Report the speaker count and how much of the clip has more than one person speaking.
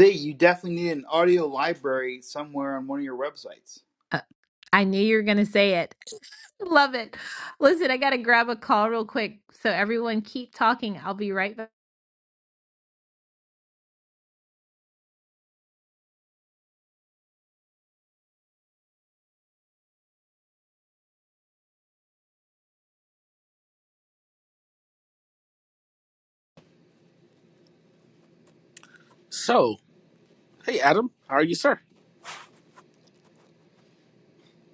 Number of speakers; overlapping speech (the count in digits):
3, no overlap